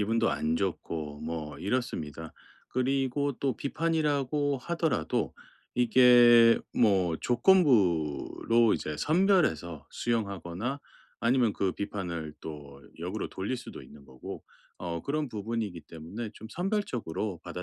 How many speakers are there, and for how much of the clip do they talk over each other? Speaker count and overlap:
one, no overlap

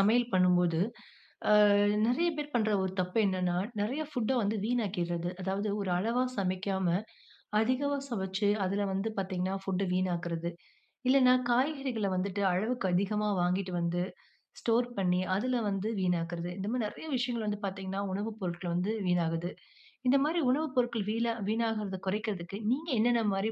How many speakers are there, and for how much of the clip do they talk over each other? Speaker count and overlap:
one, no overlap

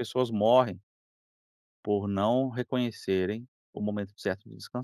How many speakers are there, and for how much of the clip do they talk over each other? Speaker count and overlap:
one, no overlap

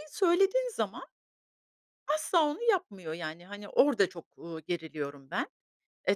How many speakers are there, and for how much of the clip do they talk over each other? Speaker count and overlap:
one, no overlap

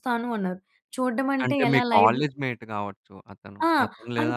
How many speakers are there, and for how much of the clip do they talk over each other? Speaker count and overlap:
two, about 27%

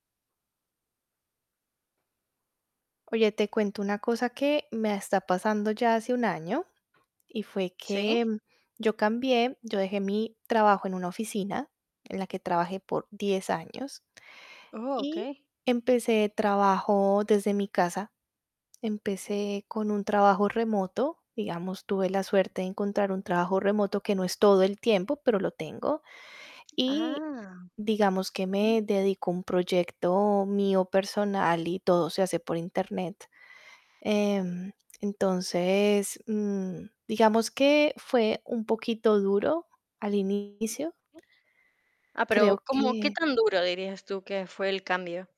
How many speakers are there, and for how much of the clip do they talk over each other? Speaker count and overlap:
two, about 4%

